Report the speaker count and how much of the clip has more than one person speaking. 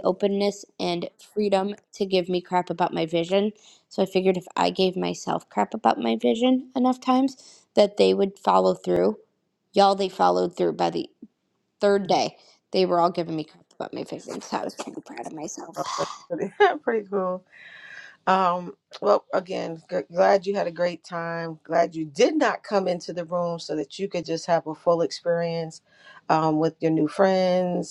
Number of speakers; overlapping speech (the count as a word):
two, under 1%